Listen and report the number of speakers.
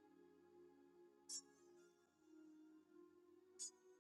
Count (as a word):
zero